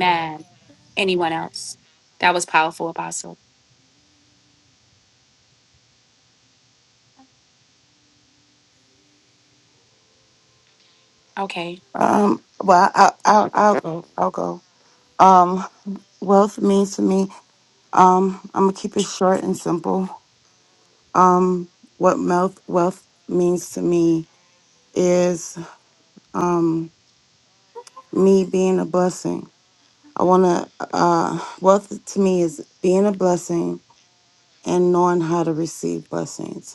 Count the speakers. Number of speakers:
two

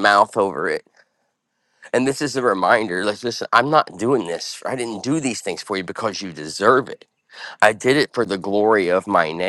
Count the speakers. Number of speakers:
one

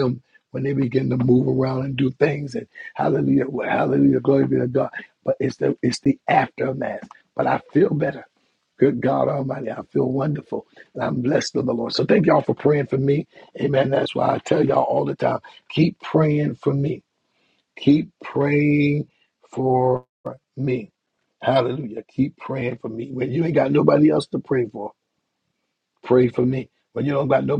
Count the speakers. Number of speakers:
one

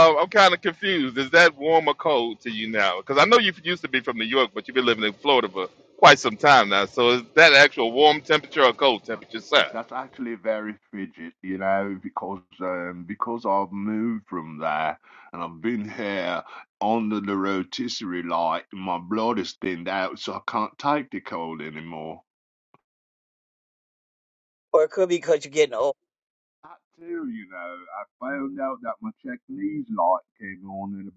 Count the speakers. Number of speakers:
three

